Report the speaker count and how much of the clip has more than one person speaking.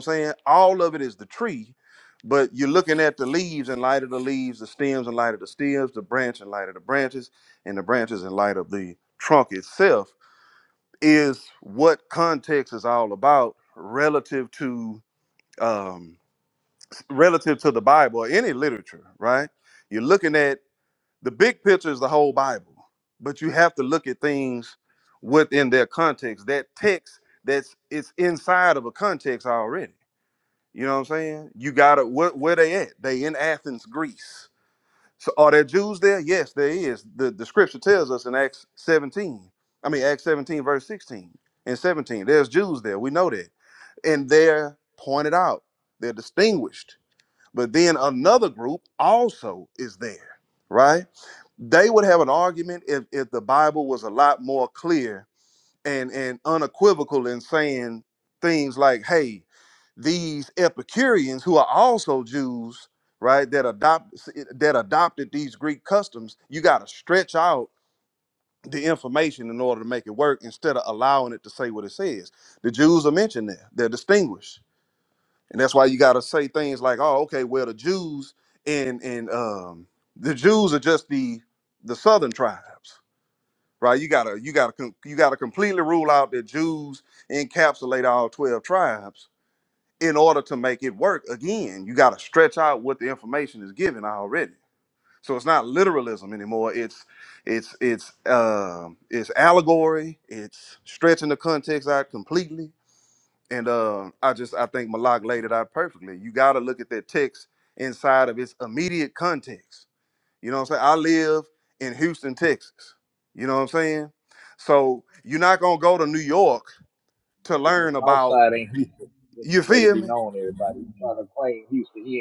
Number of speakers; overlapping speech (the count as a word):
two, about 1%